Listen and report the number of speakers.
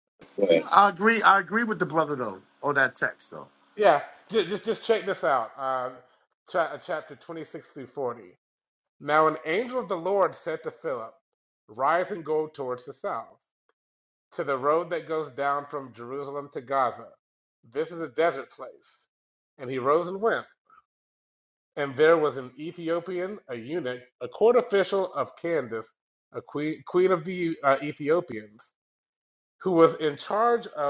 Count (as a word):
two